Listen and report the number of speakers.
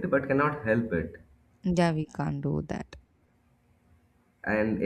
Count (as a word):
two